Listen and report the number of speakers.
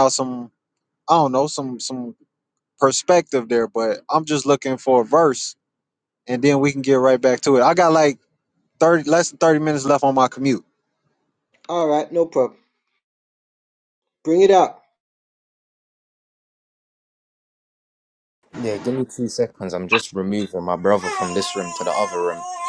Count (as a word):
three